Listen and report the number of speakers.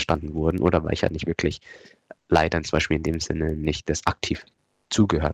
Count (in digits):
1